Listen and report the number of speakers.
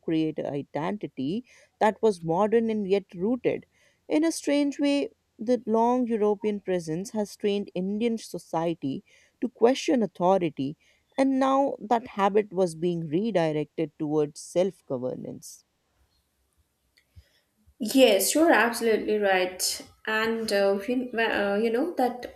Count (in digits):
2